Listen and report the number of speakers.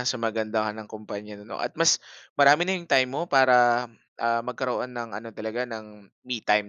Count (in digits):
1